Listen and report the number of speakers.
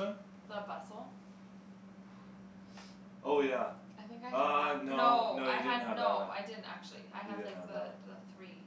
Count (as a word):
two